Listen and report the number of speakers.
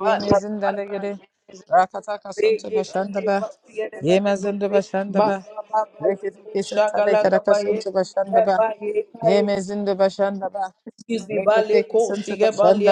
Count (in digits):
2